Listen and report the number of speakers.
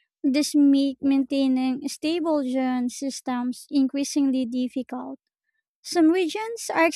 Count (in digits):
1